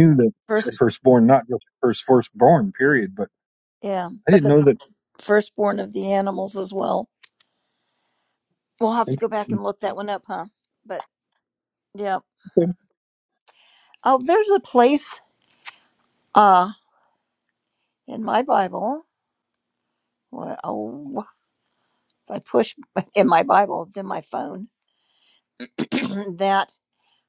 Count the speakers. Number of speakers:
2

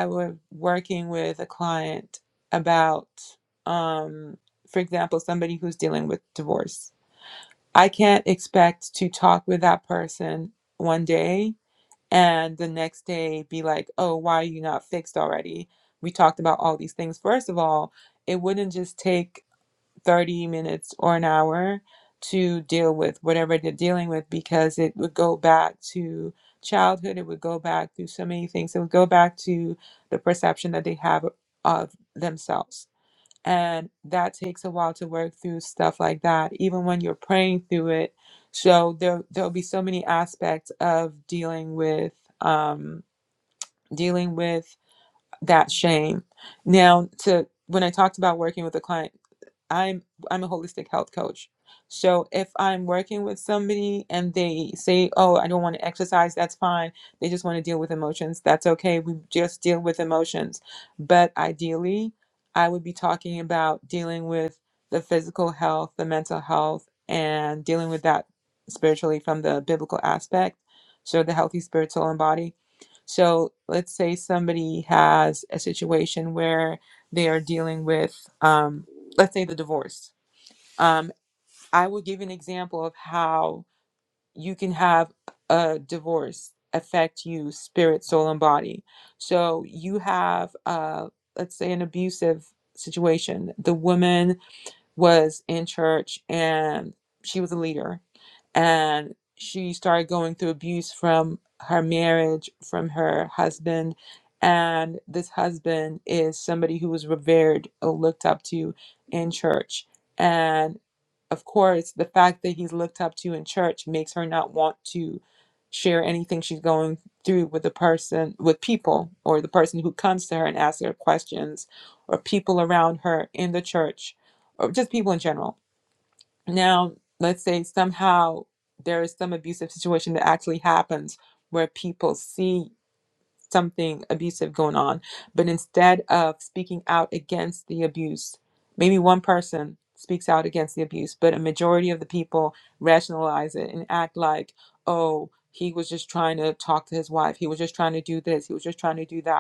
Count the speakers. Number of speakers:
1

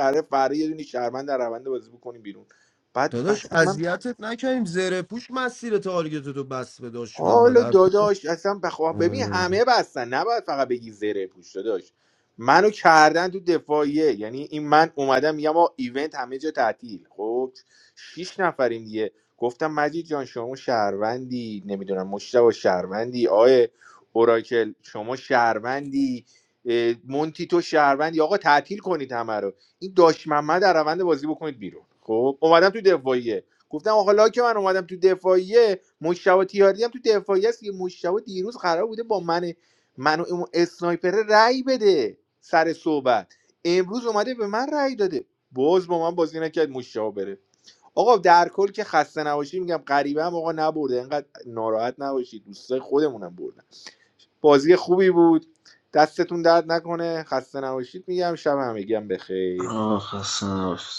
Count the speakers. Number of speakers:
3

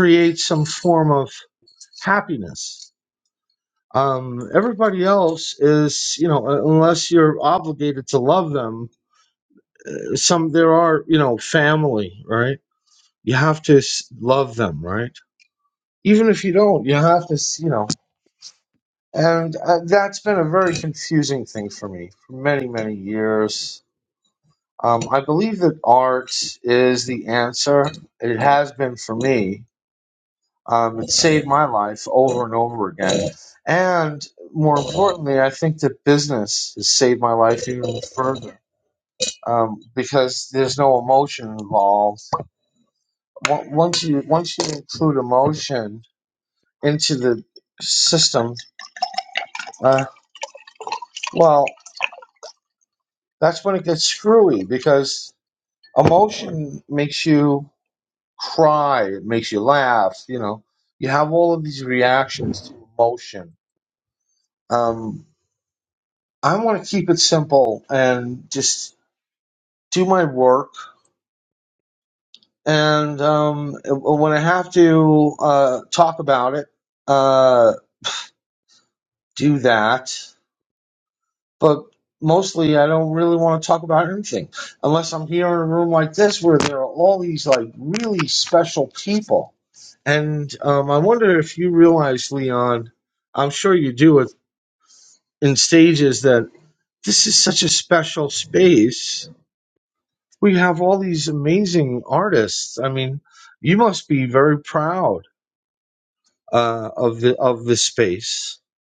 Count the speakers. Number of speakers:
1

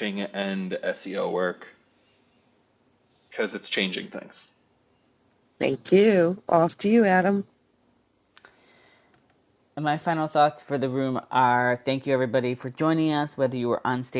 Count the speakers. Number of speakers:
3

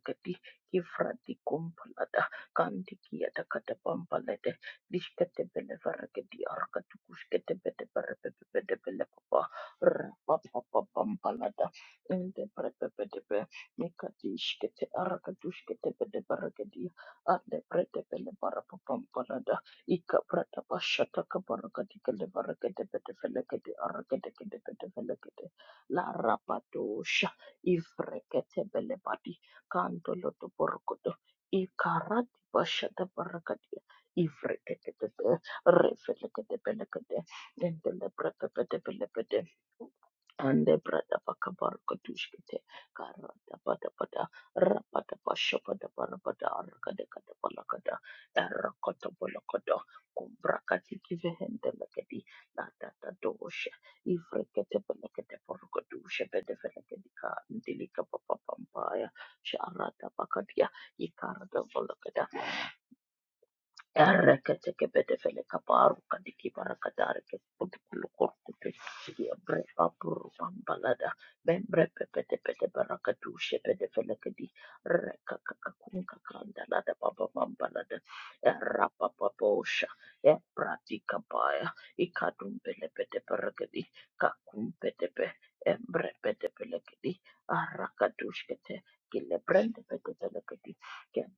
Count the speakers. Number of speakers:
1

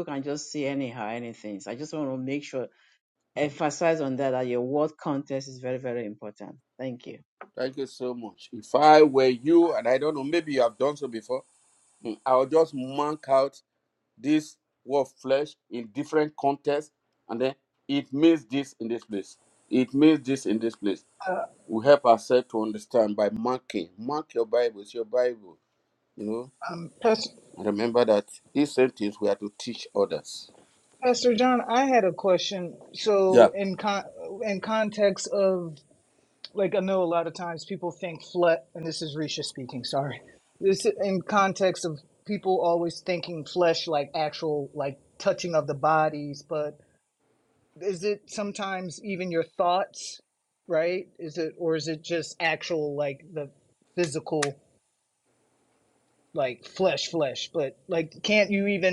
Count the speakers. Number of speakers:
3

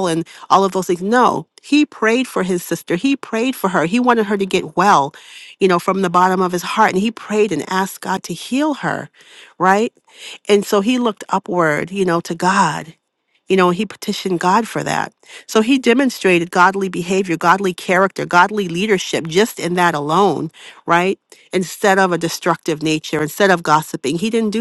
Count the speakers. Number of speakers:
1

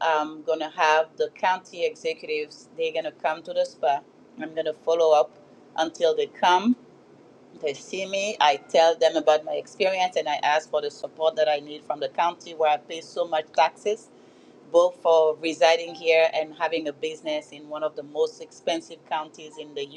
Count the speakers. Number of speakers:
1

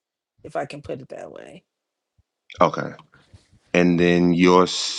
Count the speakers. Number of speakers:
2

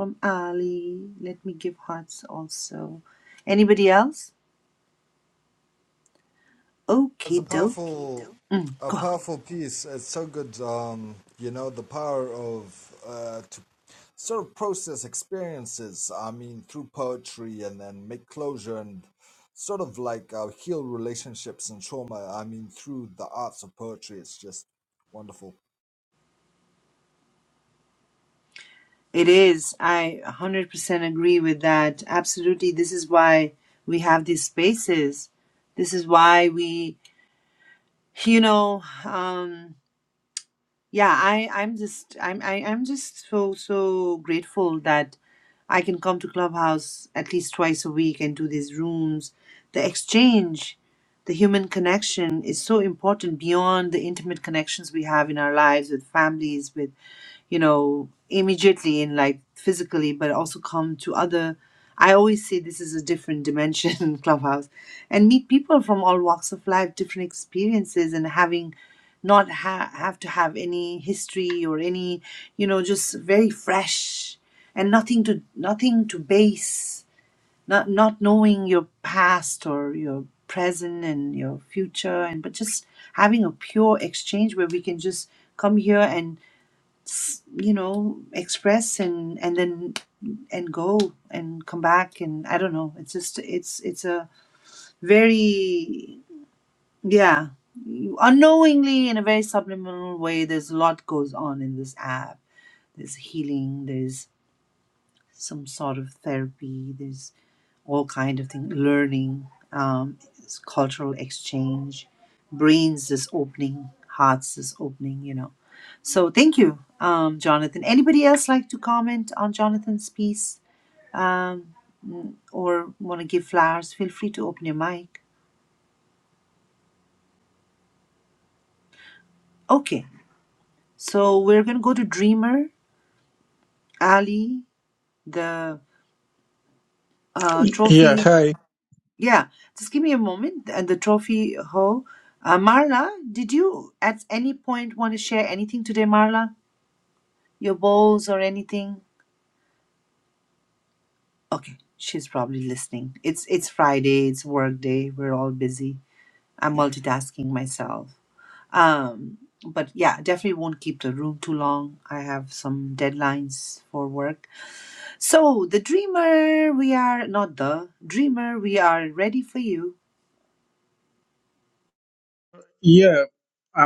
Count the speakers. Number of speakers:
3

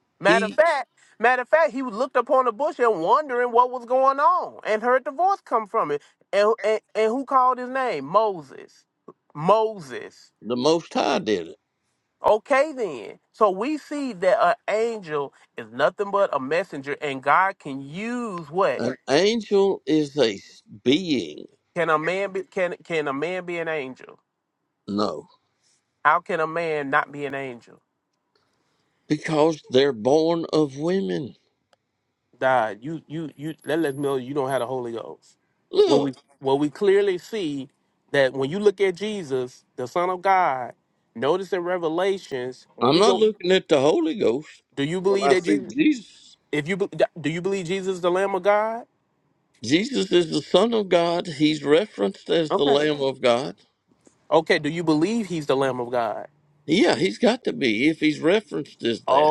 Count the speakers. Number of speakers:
2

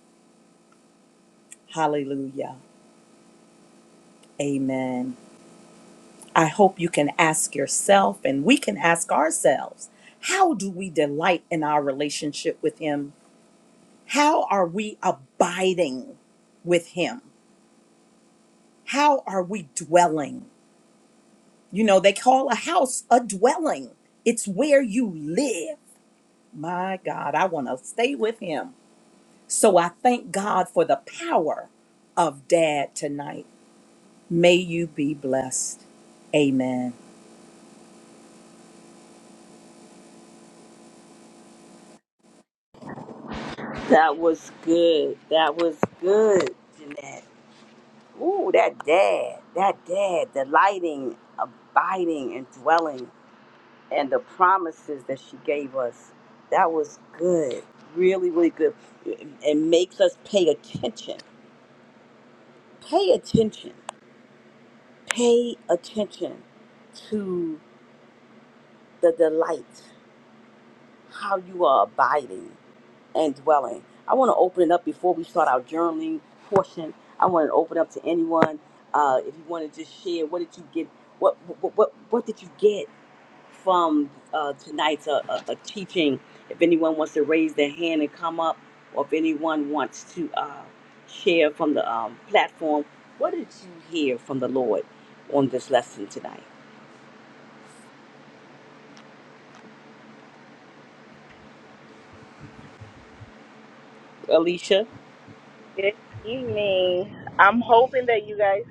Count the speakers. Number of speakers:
3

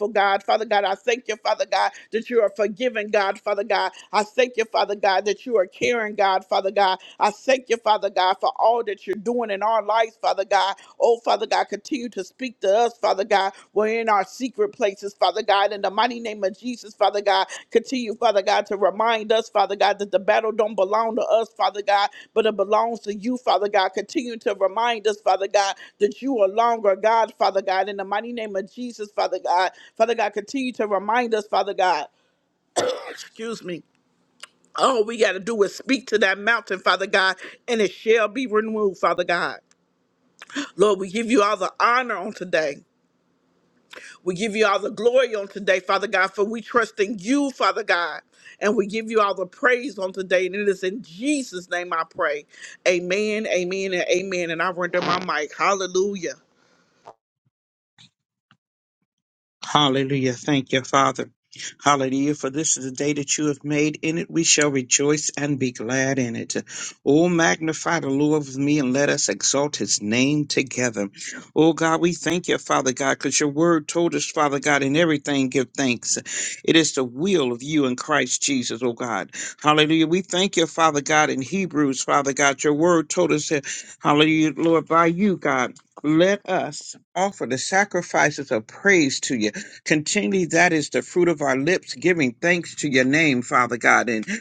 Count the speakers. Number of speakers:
2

